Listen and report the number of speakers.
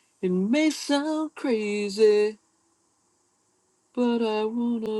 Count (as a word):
one